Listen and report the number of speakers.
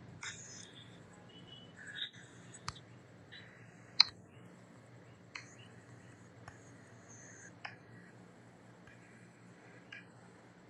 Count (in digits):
0